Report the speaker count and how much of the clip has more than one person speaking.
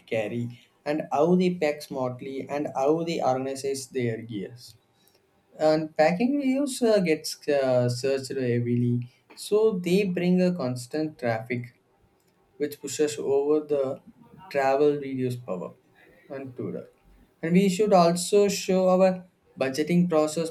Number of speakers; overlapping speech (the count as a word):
one, no overlap